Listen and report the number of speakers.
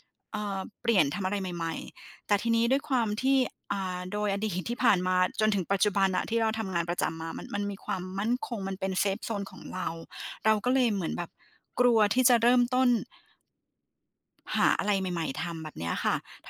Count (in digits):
1